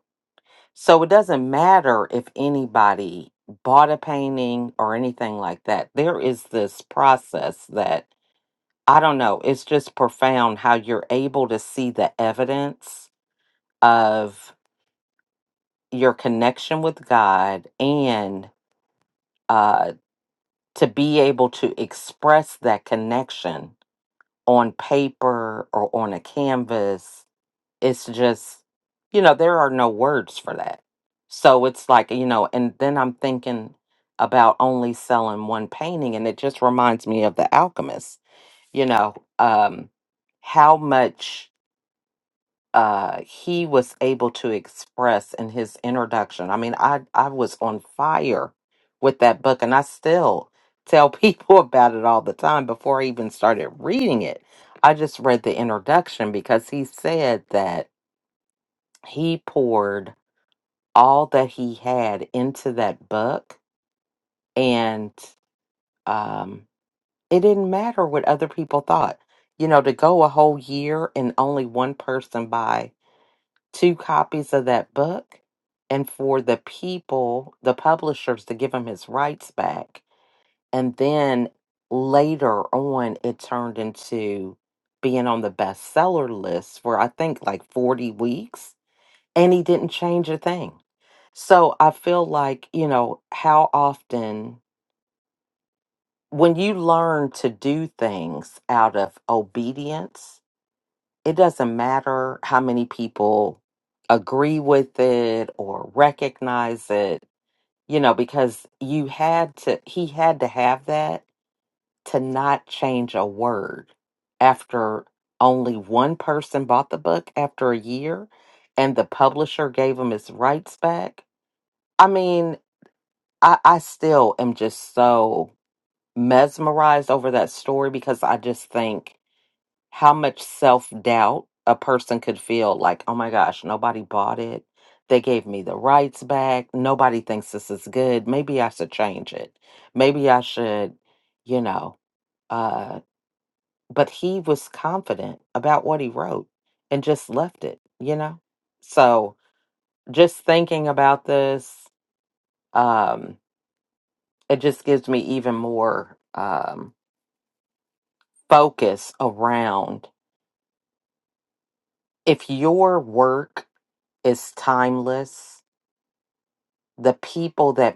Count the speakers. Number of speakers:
one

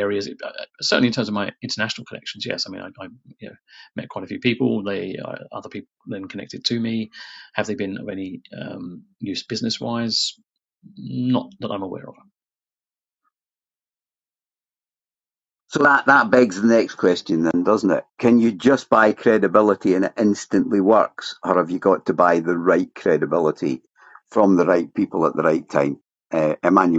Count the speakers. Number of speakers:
two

